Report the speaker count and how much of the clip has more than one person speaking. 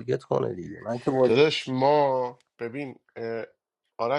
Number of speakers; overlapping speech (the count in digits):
2, about 4%